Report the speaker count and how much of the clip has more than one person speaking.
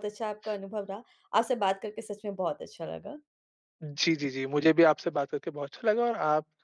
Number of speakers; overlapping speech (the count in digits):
2, no overlap